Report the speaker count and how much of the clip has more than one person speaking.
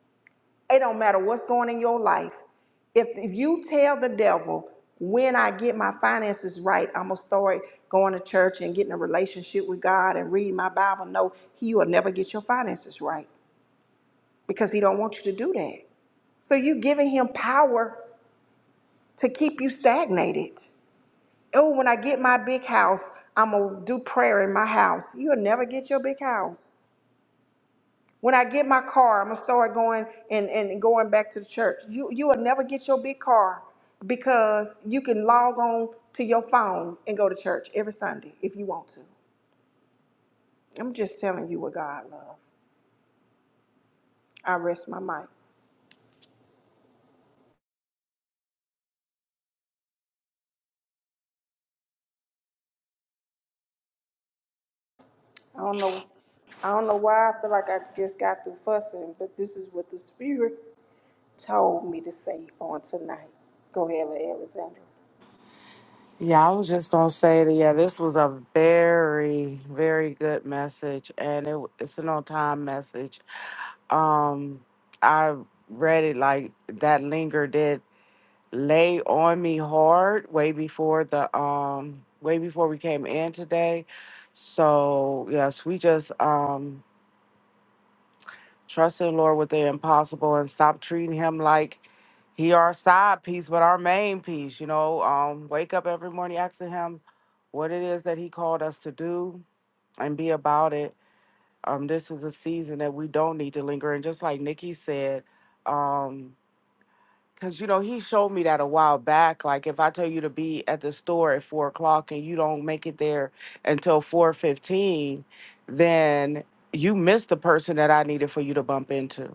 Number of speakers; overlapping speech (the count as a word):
two, no overlap